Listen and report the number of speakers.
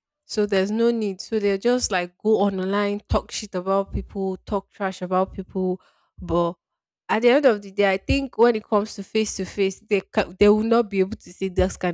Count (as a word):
one